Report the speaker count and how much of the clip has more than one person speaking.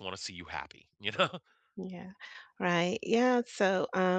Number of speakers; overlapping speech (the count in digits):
2, no overlap